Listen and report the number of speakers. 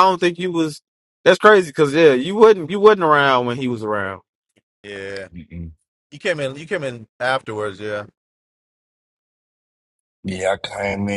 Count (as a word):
three